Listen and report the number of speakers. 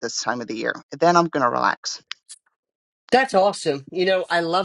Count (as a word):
two